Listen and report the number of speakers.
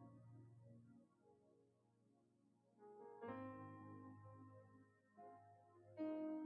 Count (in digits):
0